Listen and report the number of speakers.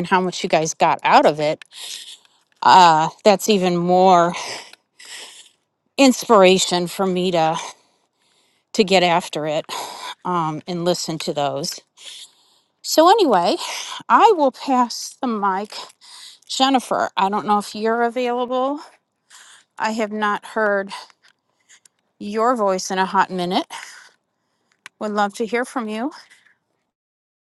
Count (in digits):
1